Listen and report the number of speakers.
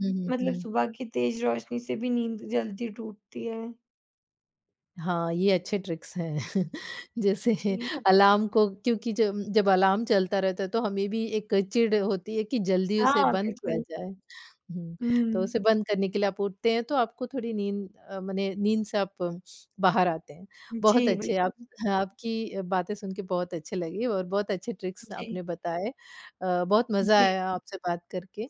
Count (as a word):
two